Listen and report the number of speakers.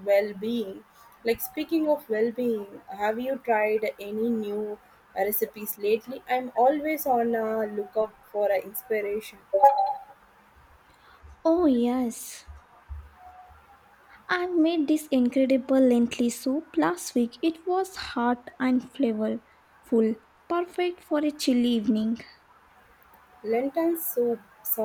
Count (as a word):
two